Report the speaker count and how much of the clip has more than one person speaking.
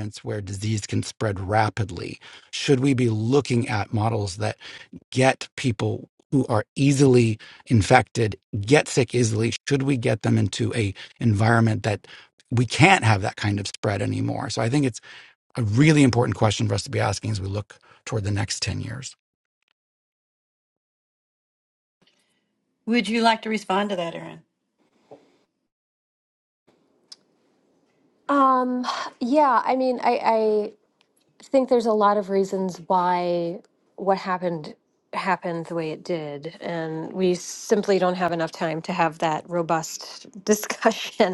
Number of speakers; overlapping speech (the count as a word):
three, no overlap